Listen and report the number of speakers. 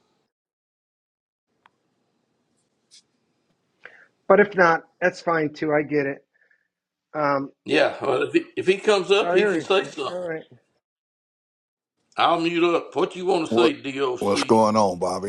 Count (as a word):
three